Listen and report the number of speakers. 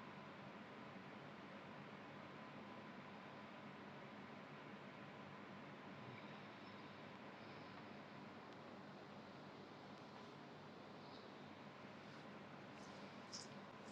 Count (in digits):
0